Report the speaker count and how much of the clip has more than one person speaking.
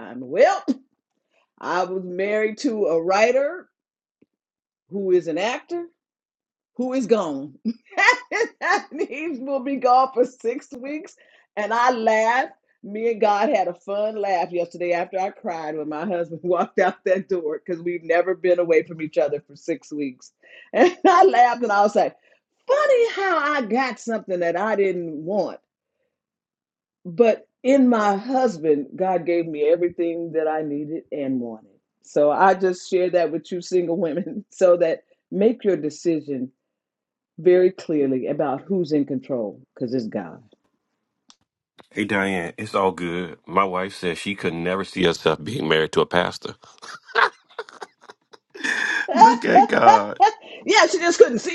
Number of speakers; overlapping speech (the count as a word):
two, no overlap